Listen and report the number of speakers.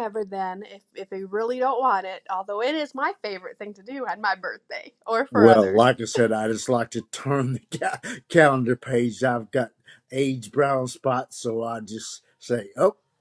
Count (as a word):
two